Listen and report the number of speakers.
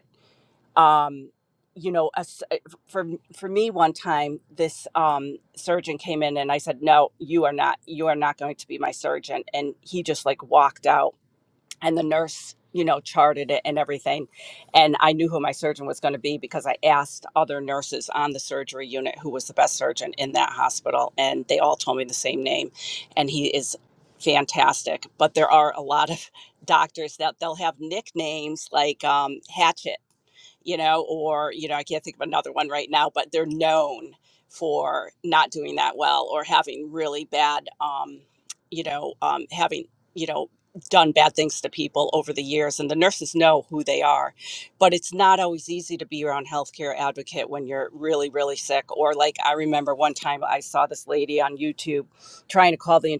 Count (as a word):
one